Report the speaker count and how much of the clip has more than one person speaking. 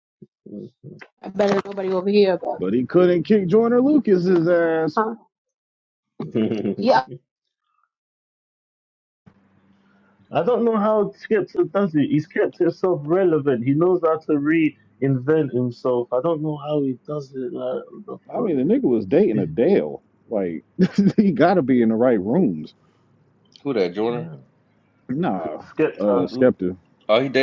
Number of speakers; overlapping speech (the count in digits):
4, about 2%